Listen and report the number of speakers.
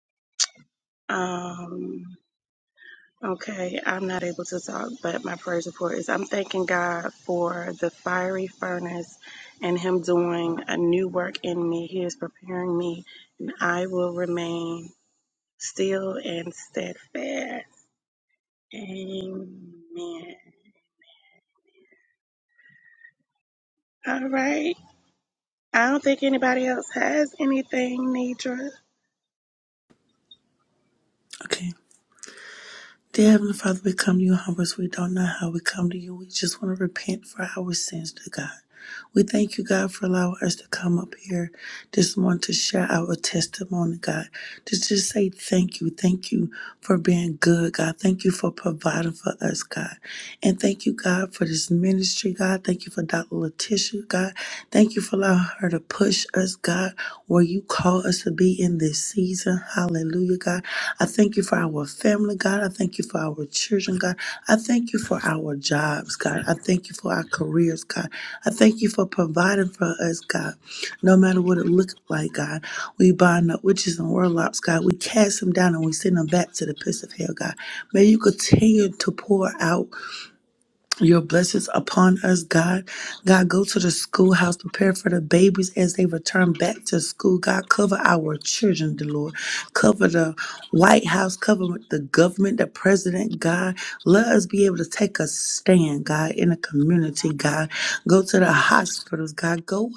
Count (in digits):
2